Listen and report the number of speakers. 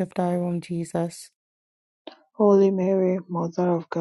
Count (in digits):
2